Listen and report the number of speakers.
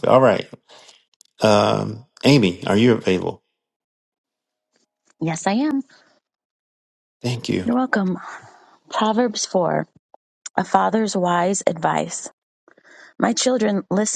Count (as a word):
two